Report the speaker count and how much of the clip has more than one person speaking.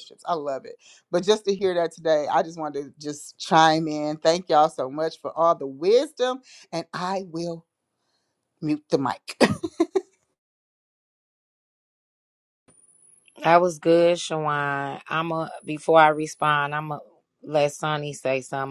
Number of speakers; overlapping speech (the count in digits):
2, no overlap